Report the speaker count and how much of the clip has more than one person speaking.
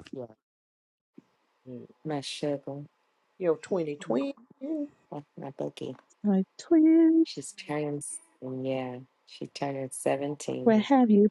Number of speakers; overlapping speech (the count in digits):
3, about 1%